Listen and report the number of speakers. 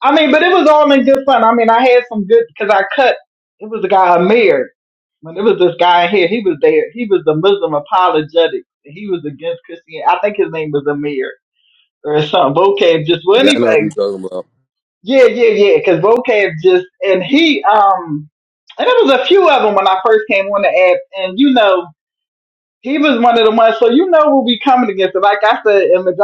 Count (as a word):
two